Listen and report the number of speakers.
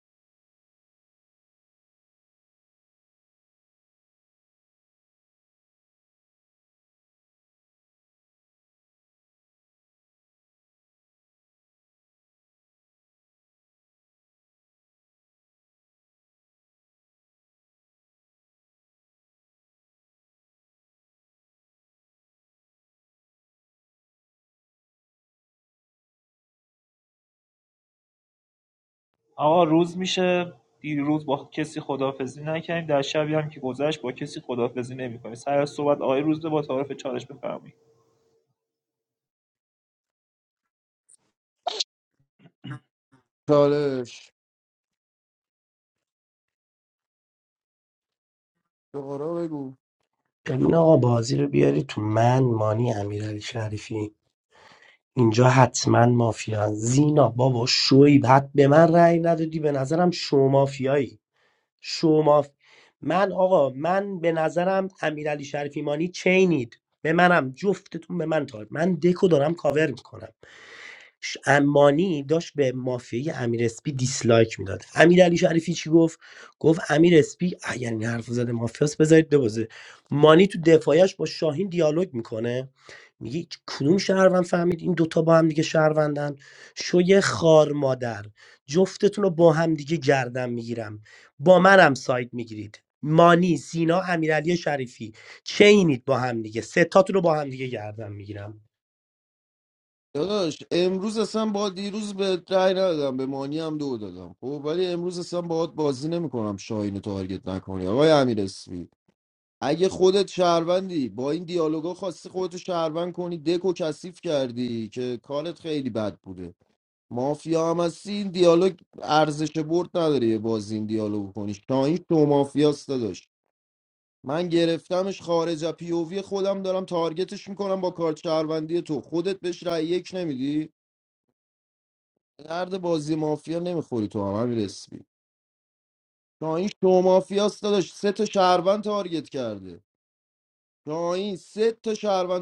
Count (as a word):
three